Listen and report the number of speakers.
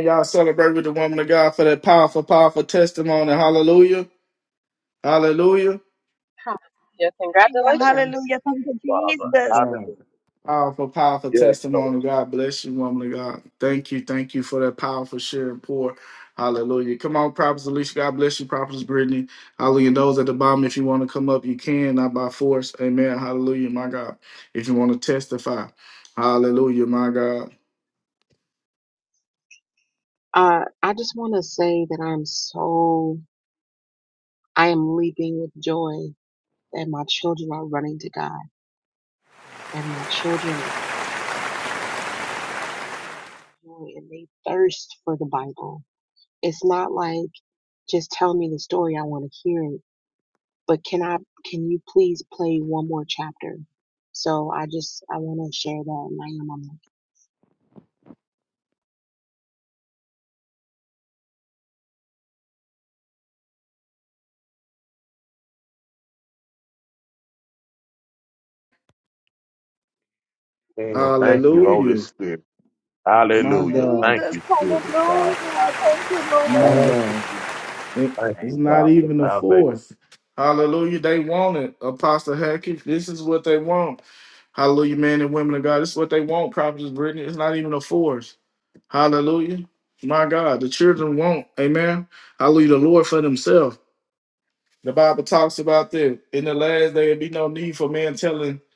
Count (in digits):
4